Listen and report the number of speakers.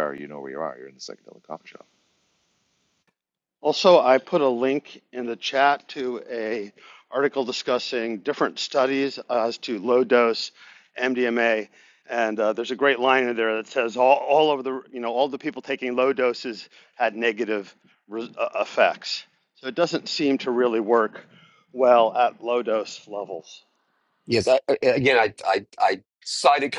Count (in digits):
3